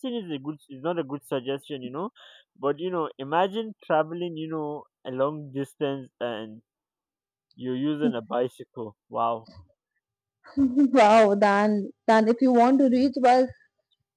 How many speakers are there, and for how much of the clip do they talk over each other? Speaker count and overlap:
2, no overlap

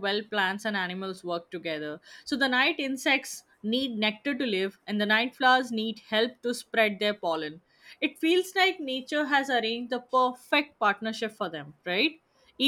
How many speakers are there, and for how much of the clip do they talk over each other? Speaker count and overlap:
1, no overlap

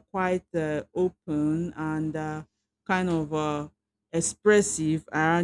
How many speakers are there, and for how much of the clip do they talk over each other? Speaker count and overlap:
1, no overlap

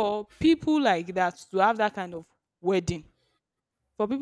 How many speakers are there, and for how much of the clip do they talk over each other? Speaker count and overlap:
1, no overlap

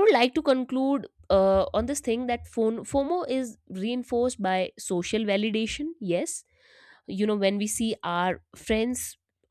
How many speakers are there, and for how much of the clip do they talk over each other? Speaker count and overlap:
1, no overlap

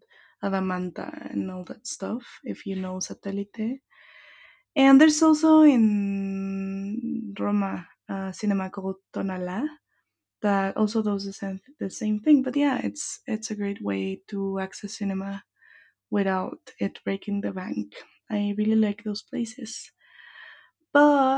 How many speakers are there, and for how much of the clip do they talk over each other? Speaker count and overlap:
1, no overlap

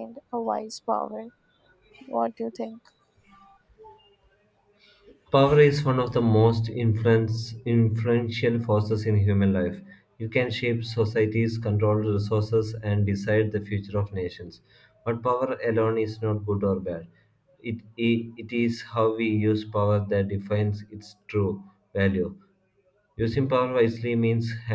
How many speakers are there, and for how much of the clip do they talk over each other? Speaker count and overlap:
2, no overlap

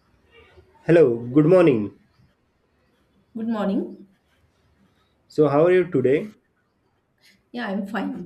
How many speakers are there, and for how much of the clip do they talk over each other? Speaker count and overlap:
2, no overlap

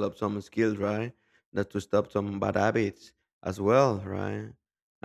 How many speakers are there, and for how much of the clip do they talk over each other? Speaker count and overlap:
1, no overlap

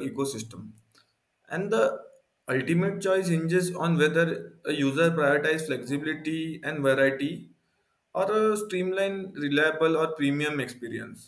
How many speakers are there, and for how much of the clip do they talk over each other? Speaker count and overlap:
1, no overlap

